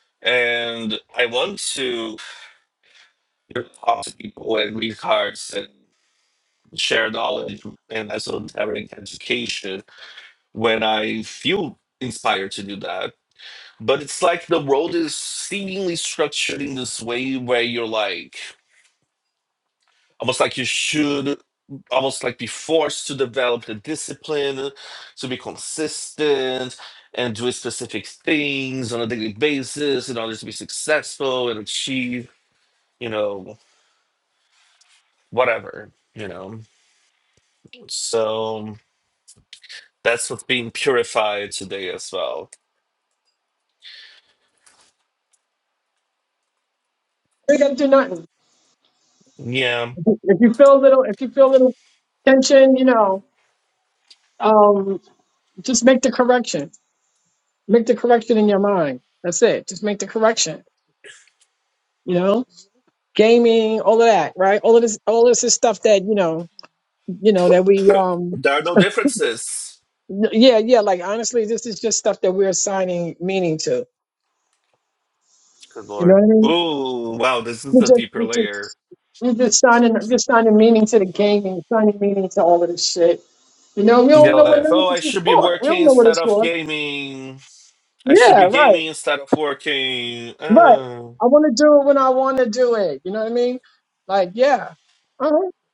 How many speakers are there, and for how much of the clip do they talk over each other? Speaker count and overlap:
two, about 5%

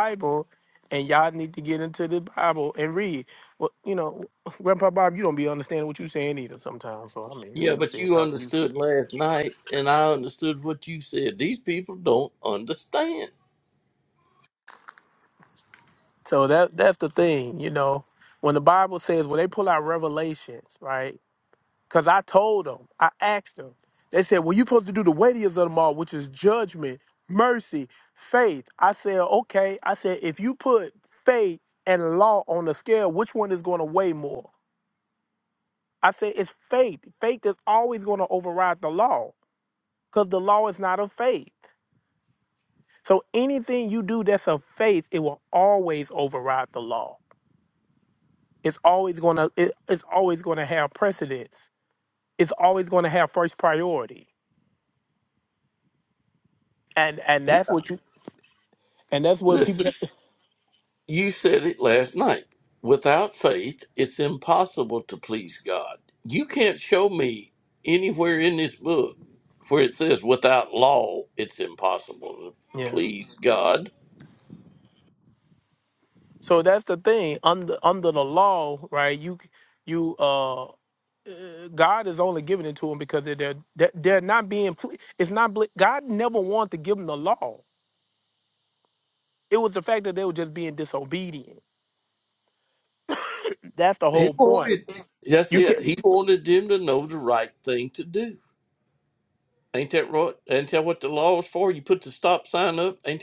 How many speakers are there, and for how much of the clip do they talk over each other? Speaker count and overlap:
two, about 2%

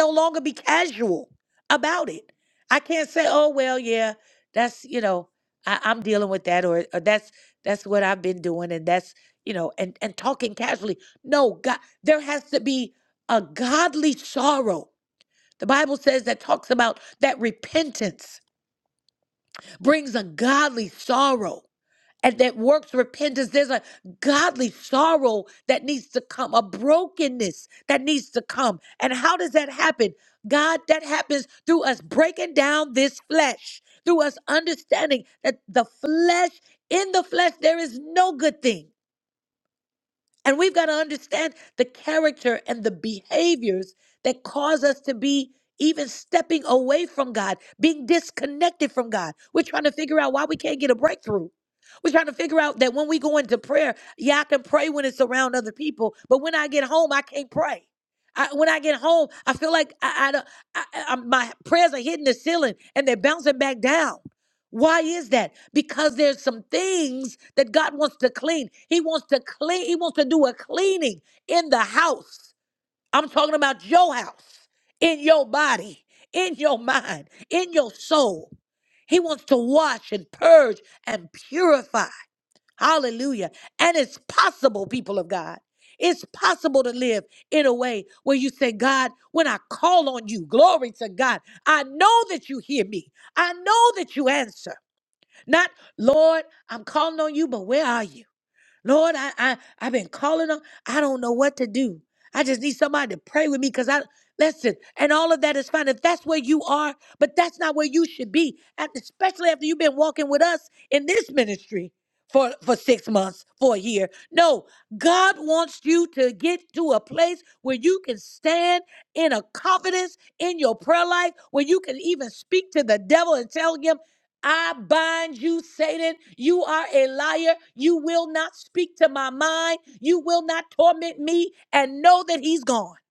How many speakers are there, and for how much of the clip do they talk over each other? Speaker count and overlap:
one, no overlap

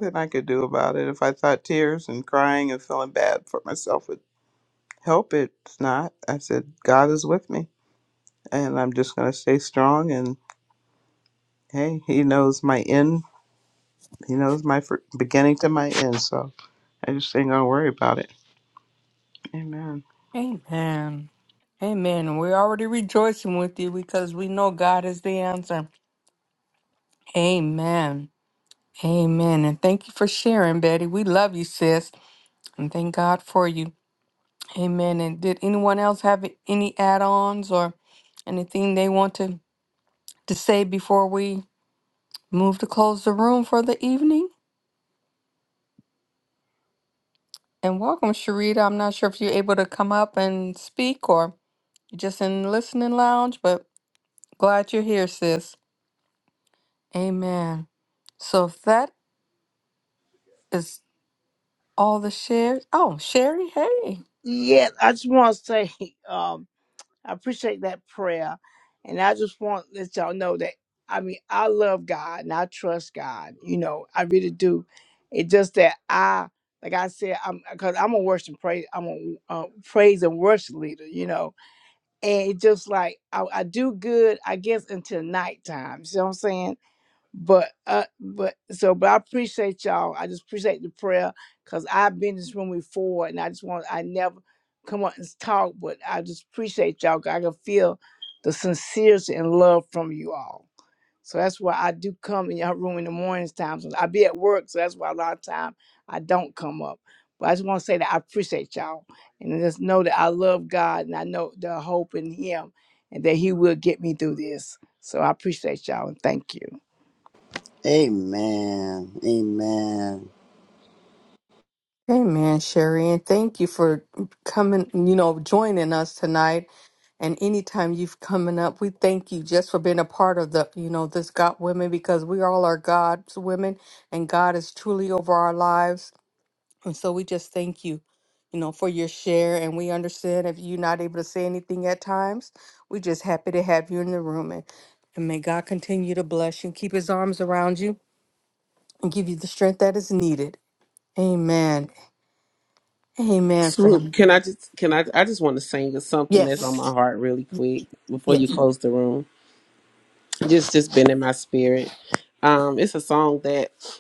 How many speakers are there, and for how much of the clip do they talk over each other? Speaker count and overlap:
five, about 1%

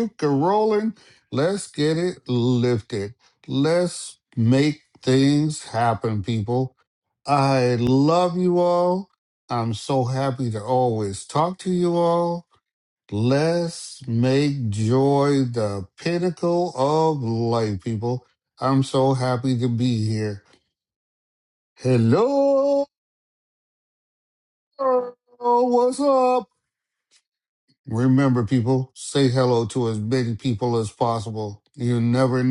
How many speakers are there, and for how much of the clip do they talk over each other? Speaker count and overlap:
one, no overlap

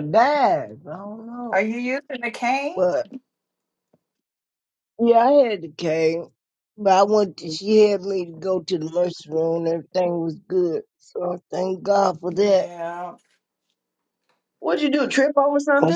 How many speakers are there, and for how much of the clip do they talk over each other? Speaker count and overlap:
three, about 3%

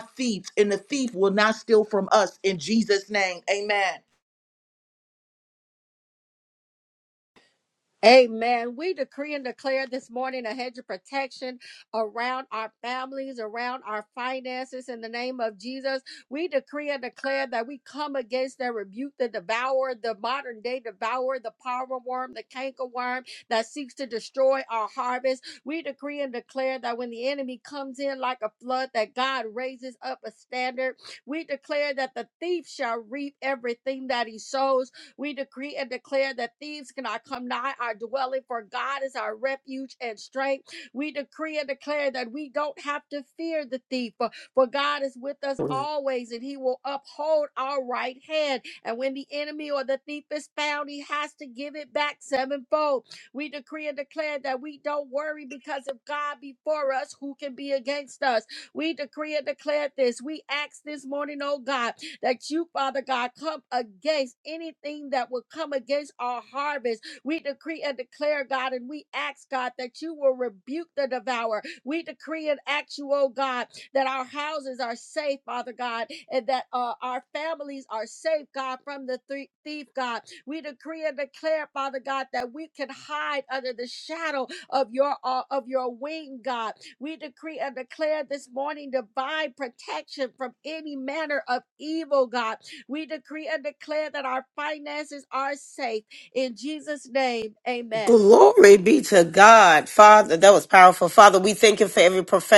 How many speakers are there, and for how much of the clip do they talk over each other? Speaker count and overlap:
three, under 1%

